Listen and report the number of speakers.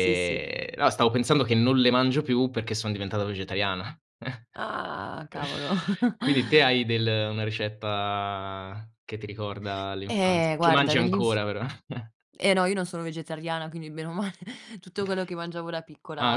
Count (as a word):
two